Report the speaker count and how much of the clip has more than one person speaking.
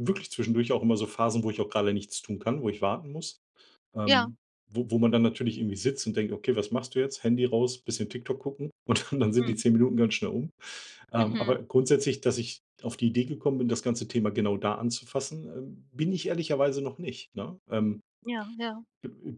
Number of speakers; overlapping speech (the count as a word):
two, about 5%